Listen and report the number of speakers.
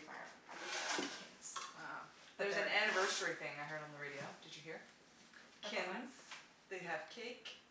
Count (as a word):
two